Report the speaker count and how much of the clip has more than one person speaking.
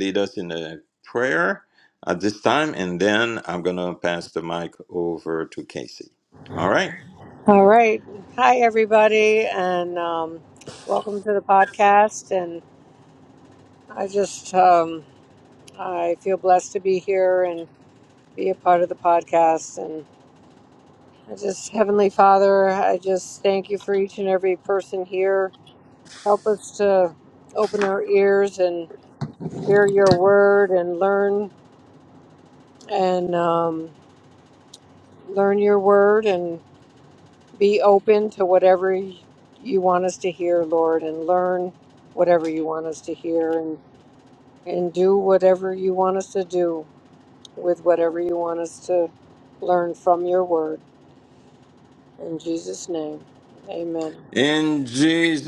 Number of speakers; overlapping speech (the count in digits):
2, no overlap